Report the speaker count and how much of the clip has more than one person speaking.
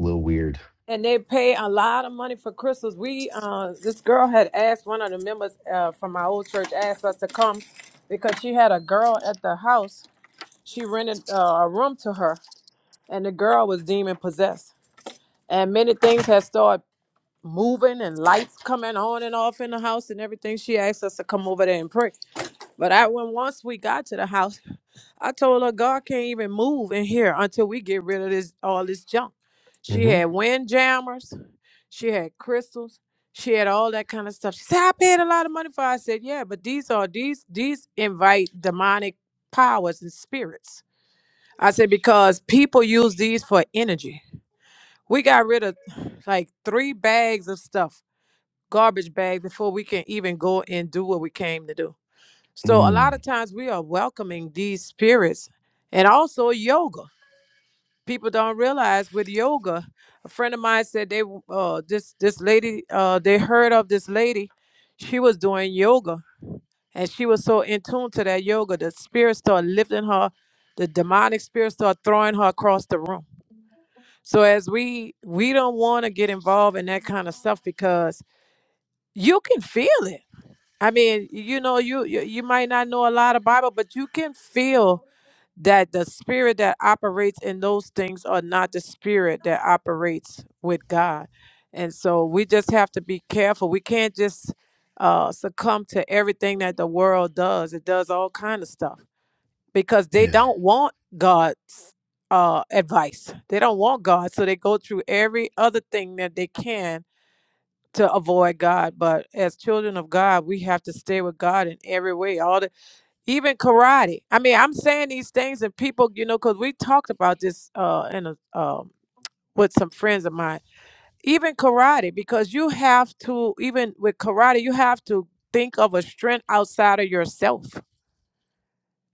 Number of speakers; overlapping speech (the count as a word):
two, about 1%